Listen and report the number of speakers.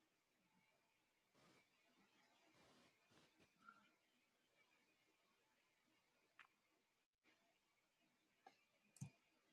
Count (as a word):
zero